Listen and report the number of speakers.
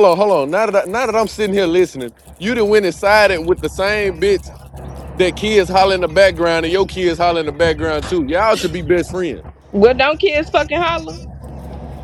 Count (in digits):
2